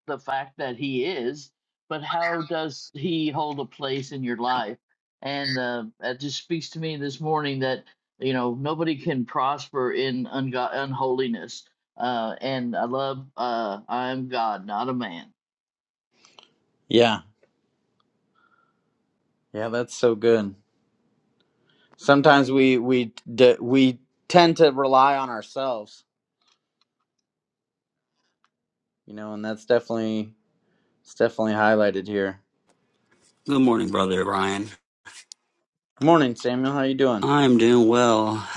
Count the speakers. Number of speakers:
three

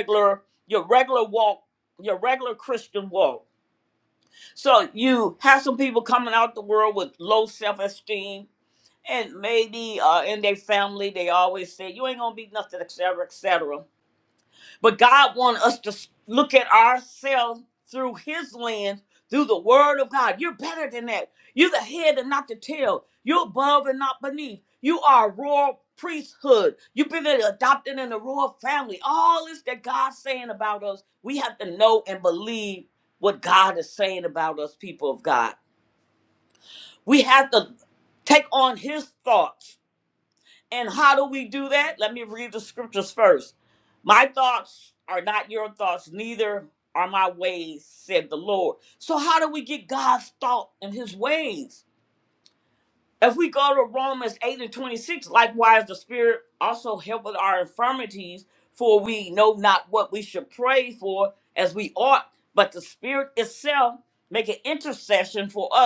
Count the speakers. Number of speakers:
one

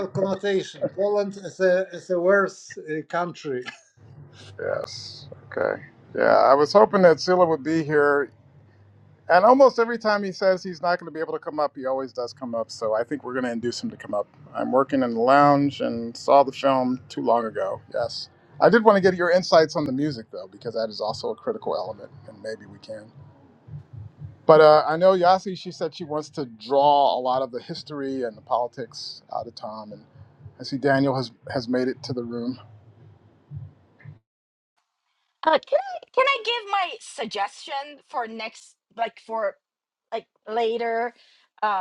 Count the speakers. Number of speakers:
three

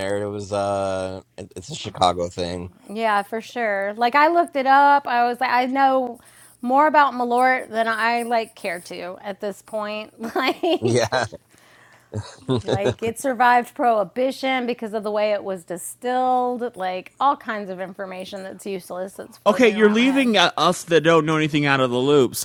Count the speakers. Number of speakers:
three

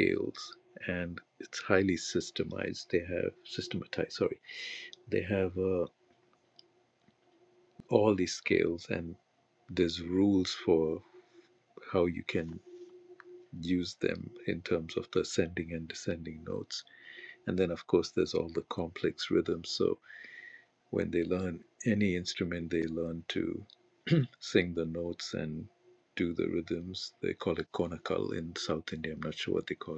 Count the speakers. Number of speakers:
one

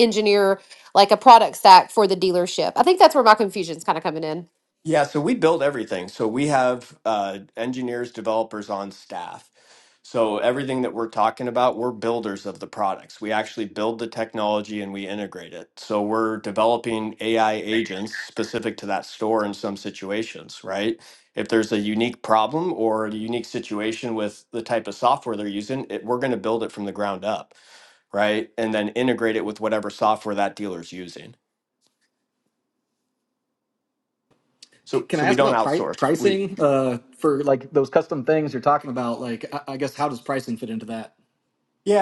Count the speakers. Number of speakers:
three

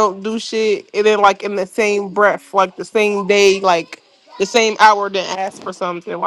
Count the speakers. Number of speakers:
one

